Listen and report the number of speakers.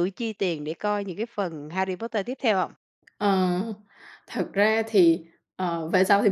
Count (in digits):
2